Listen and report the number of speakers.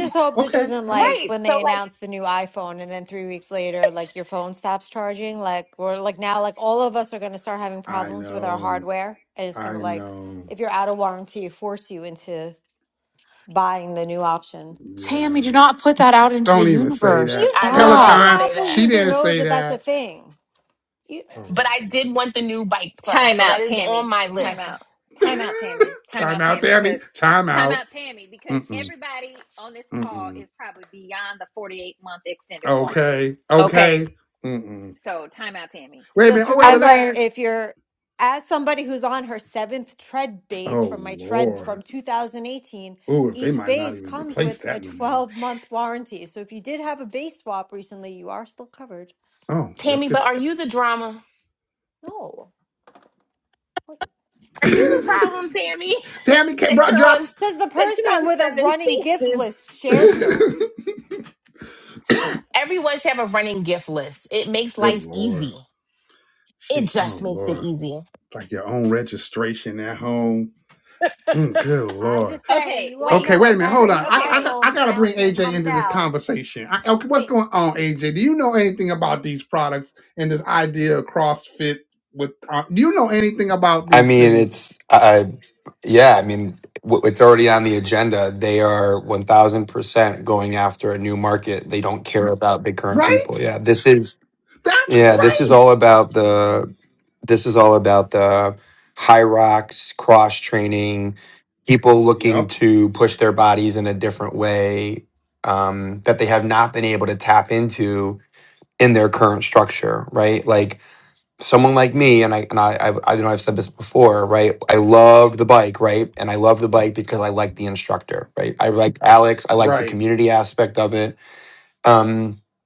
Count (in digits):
6